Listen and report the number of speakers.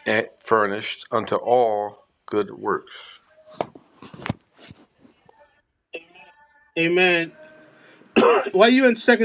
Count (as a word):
two